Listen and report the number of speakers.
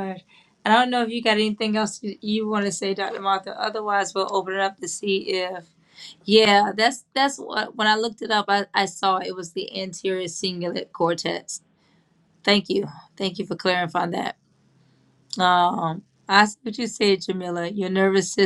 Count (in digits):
1